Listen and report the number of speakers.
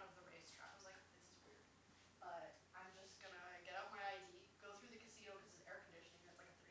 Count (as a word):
one